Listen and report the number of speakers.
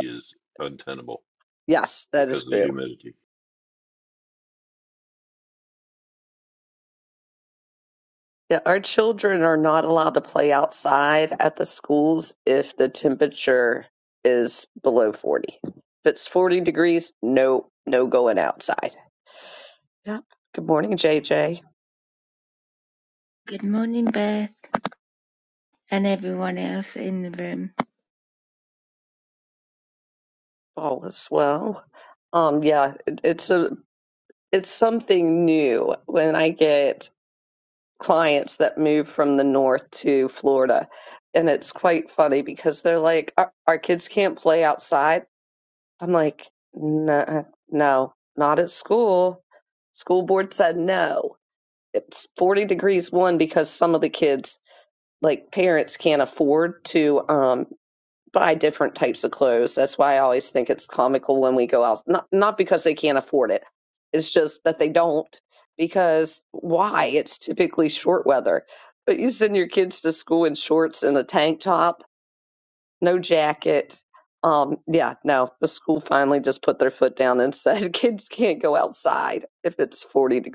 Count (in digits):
3